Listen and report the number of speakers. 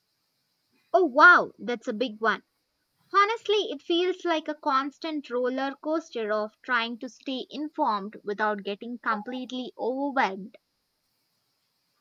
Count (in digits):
1